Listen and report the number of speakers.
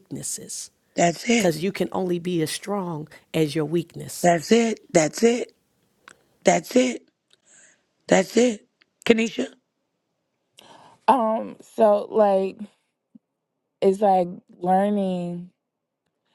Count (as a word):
three